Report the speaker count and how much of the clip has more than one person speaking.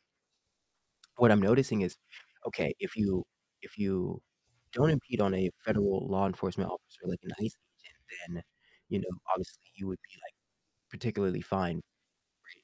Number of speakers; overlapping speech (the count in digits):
1, no overlap